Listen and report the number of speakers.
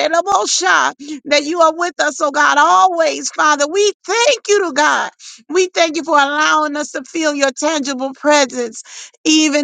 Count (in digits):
1